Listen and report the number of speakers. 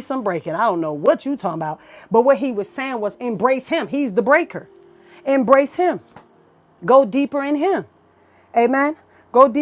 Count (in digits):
1